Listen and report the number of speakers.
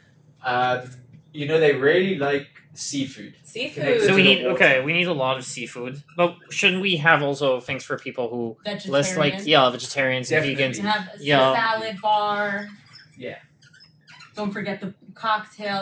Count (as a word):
three